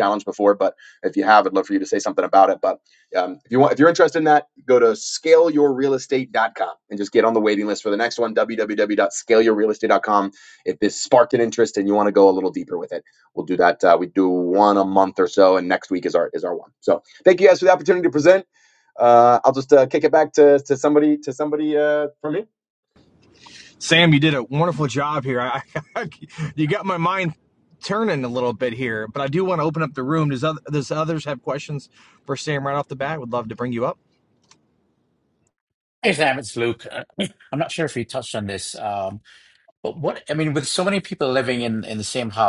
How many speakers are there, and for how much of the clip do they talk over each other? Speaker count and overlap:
three, no overlap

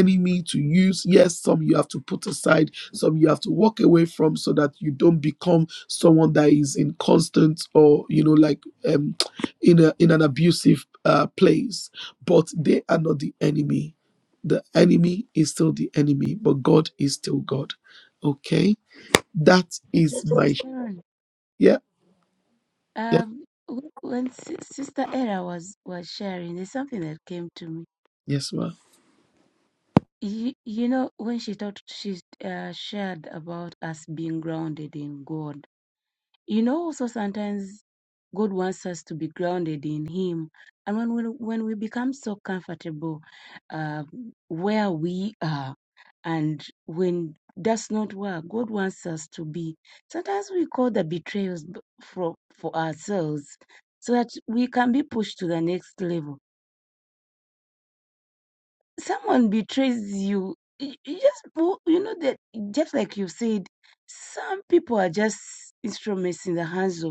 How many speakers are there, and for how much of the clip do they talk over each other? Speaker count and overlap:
two, about 1%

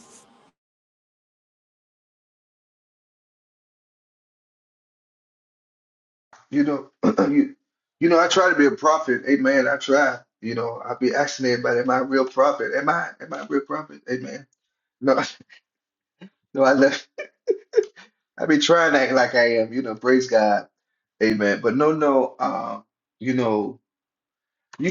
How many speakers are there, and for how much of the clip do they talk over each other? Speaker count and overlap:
one, no overlap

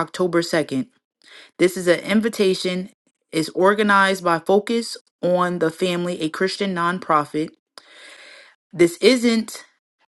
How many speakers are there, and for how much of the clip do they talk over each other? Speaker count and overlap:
one, no overlap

